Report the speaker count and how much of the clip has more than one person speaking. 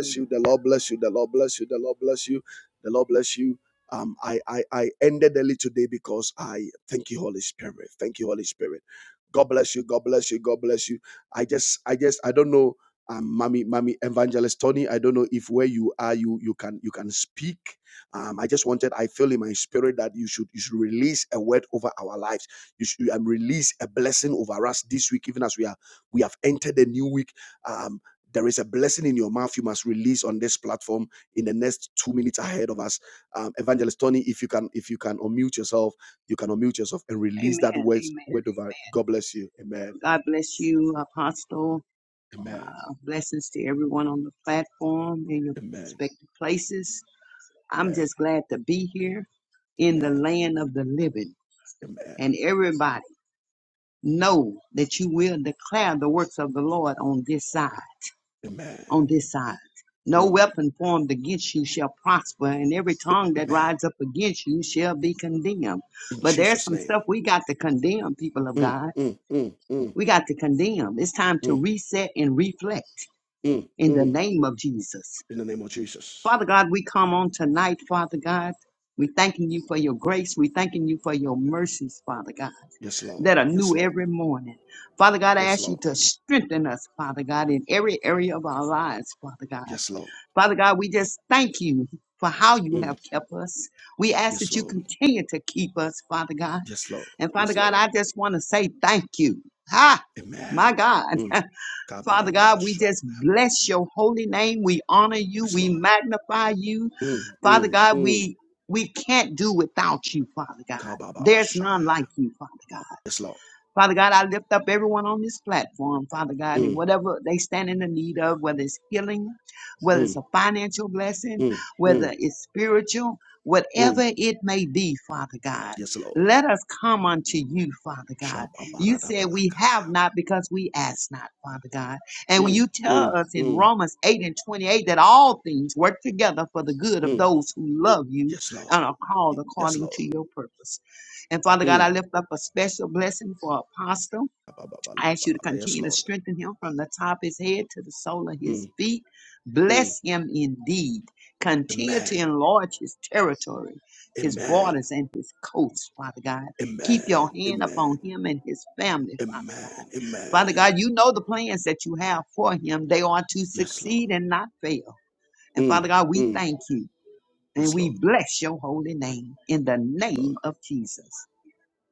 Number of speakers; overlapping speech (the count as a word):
two, about 12%